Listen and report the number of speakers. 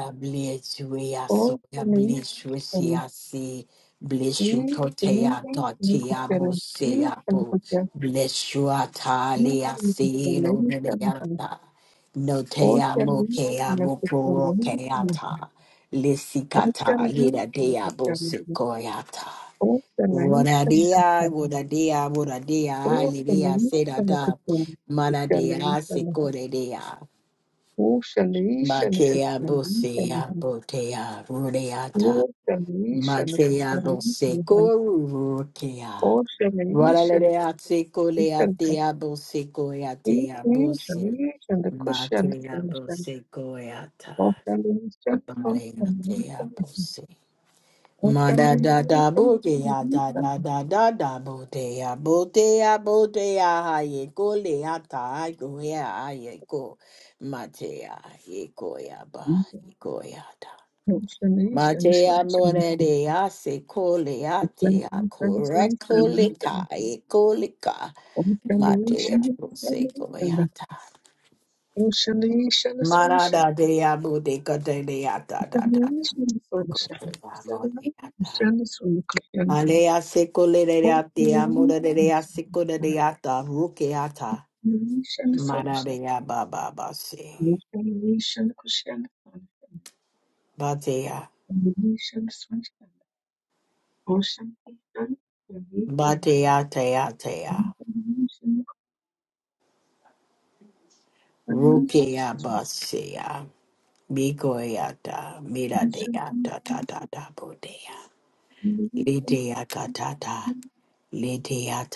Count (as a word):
two